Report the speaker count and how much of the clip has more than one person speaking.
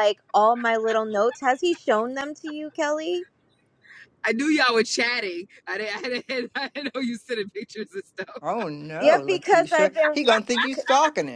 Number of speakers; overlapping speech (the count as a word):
three, about 10%